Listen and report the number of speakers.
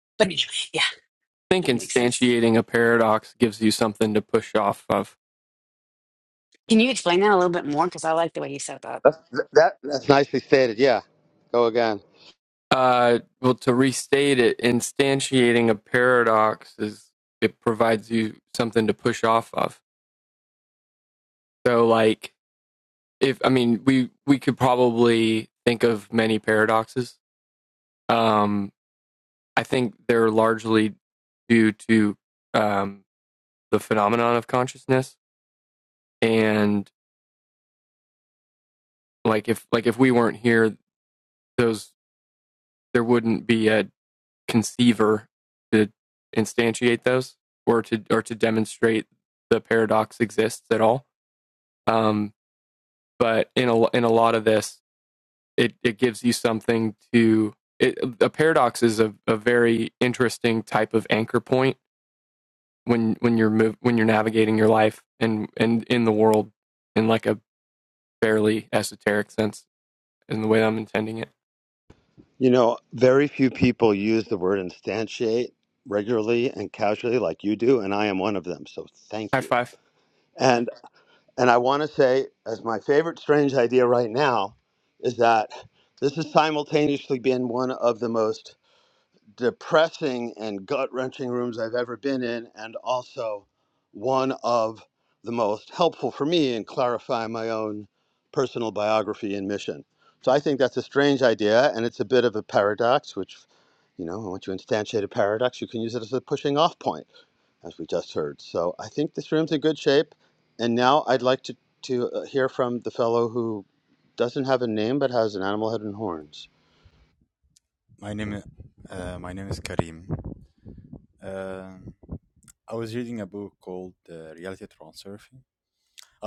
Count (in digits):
4